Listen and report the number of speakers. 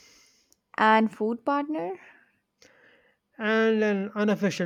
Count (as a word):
two